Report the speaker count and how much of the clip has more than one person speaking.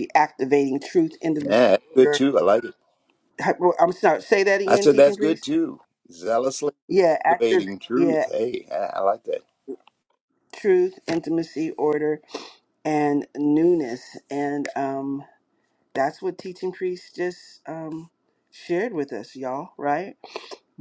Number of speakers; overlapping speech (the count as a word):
two, about 12%